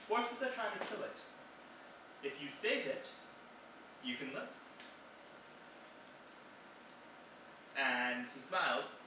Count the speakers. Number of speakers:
1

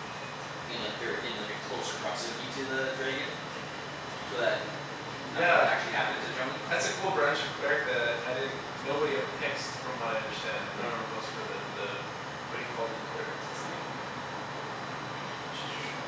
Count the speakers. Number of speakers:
2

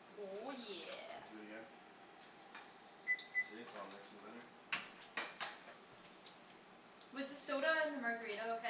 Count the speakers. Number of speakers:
2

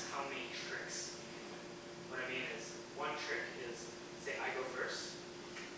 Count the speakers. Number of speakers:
1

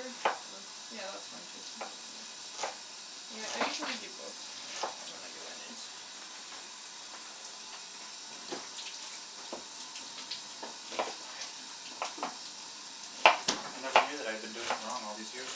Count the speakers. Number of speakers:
2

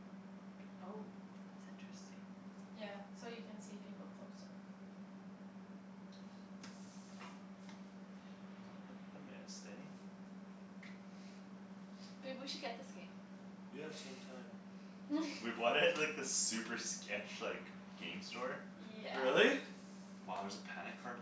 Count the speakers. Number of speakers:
4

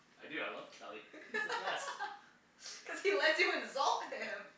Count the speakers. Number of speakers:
2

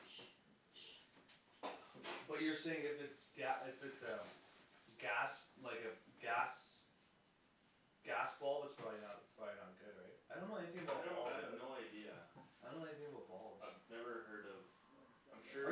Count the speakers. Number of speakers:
2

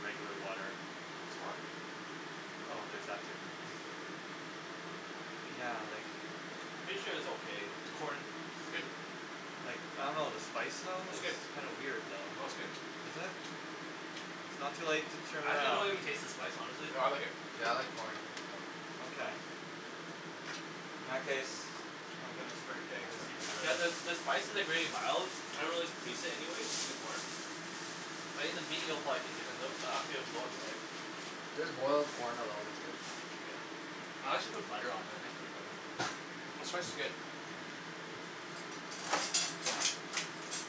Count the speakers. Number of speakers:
4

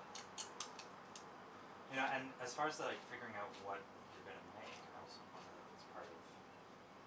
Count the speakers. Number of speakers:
1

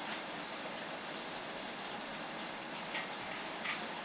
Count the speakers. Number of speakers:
0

